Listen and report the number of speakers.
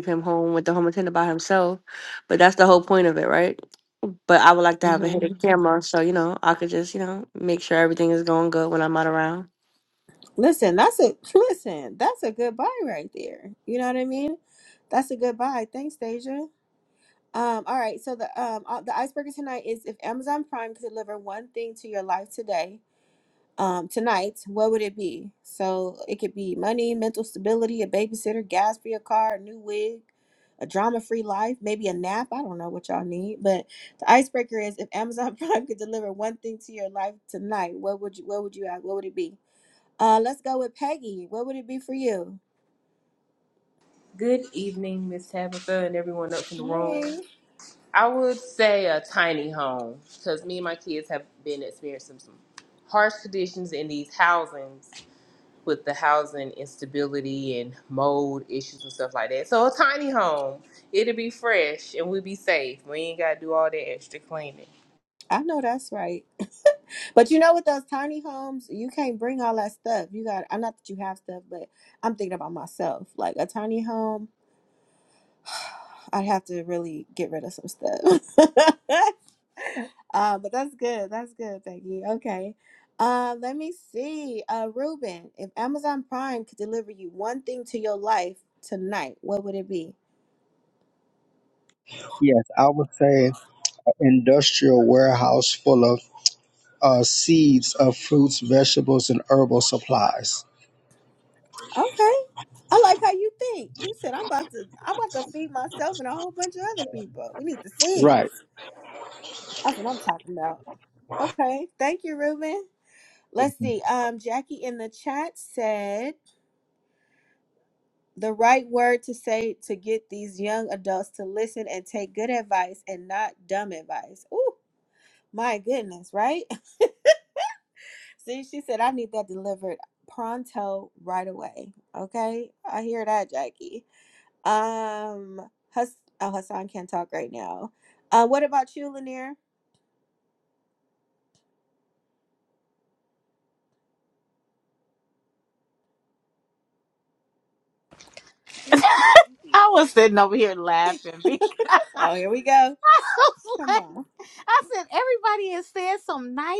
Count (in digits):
5